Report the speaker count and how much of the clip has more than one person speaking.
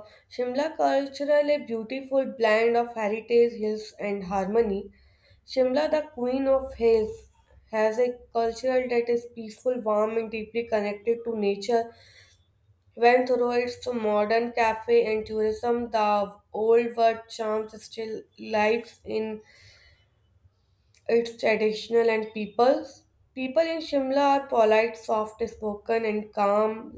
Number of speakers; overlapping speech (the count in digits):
1, no overlap